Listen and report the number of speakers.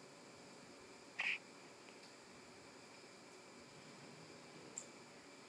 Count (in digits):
0